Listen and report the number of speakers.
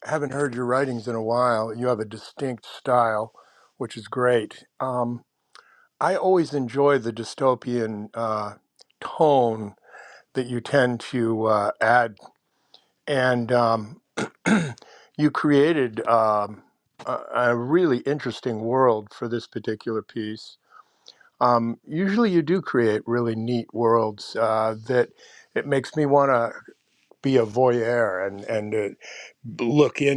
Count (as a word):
one